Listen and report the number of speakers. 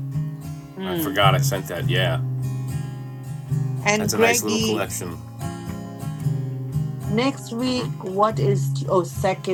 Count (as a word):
two